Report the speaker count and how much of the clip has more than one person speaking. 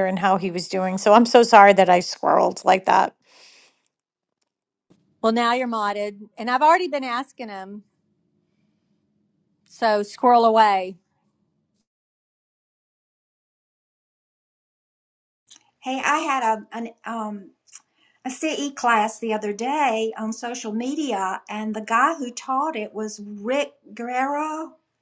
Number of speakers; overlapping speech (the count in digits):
3, no overlap